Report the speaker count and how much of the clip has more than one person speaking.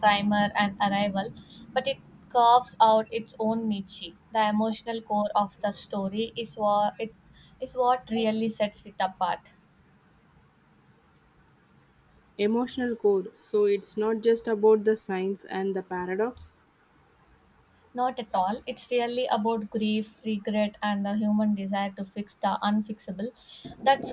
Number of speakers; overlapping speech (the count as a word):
two, no overlap